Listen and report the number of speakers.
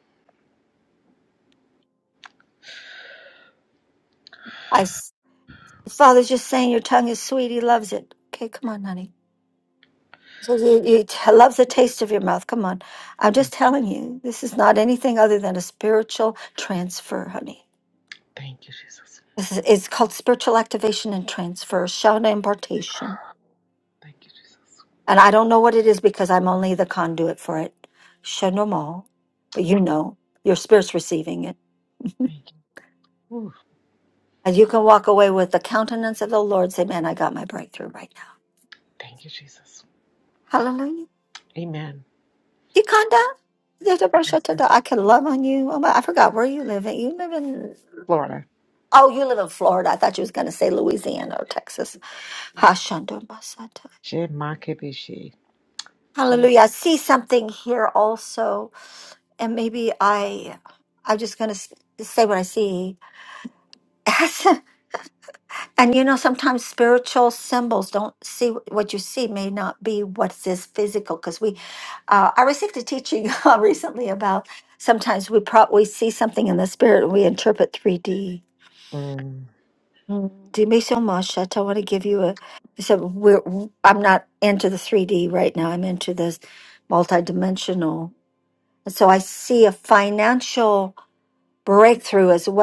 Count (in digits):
2